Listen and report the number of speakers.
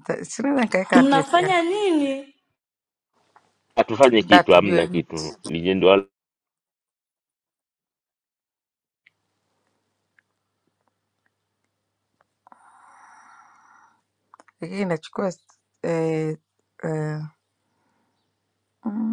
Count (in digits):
3